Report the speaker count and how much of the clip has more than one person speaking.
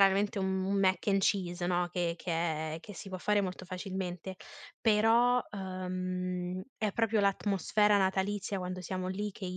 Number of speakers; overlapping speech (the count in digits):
1, no overlap